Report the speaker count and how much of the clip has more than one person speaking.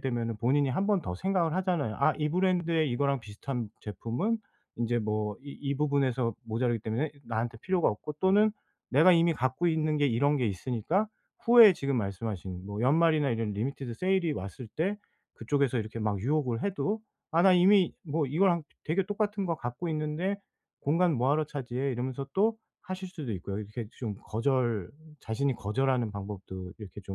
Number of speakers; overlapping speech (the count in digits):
1, no overlap